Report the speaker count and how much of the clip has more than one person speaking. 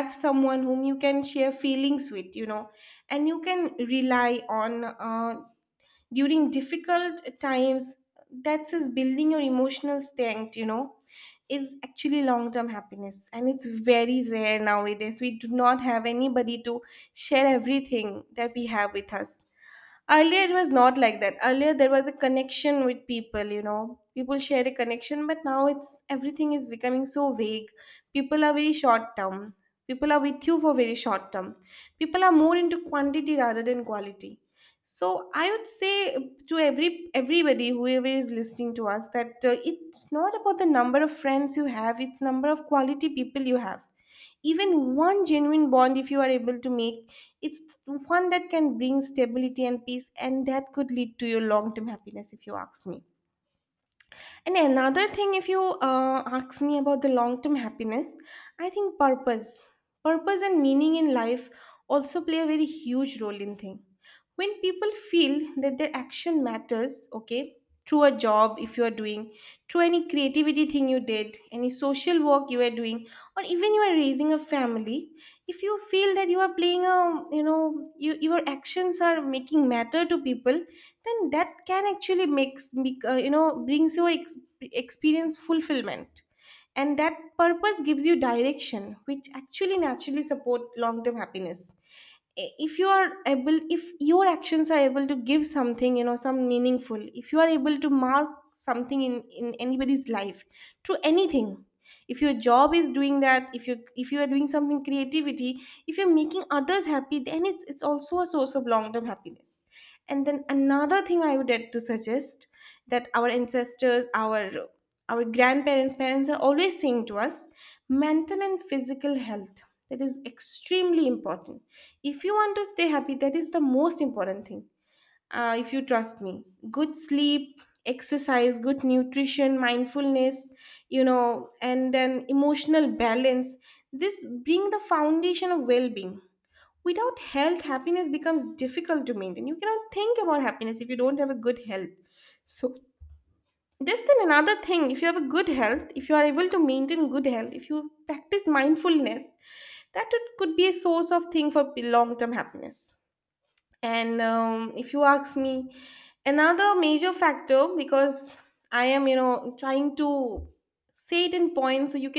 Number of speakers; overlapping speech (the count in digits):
1, no overlap